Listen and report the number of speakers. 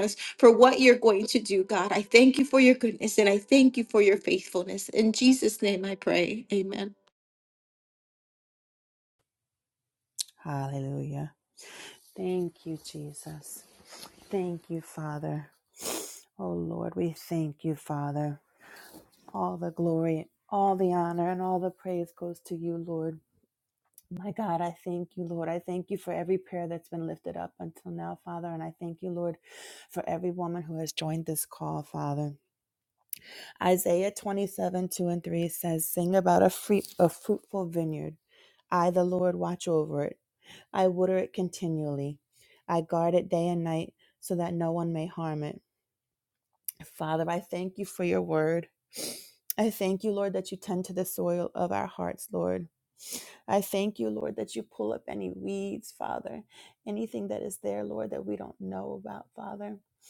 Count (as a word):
two